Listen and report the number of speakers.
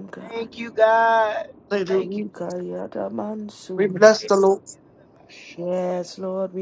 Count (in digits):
3